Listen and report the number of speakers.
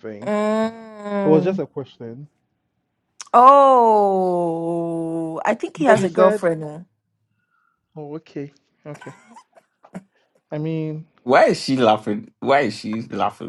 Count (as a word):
three